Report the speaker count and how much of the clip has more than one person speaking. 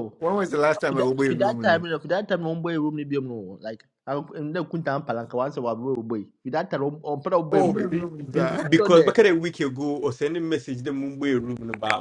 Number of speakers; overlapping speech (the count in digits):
3, about 21%